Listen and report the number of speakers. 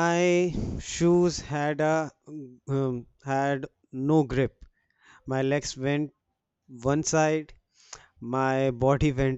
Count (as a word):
one